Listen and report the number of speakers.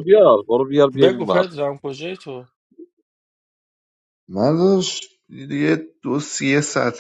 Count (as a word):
three